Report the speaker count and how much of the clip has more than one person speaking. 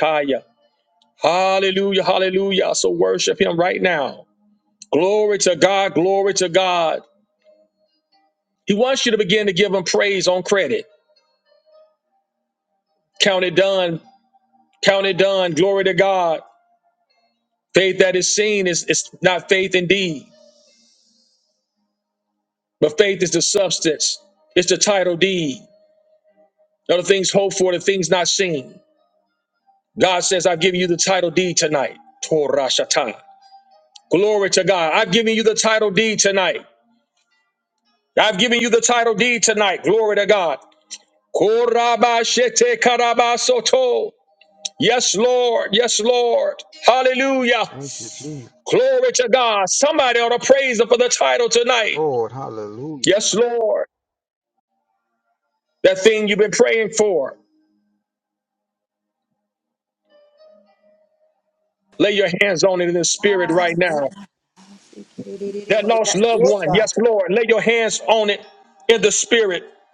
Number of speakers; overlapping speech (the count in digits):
3, about 2%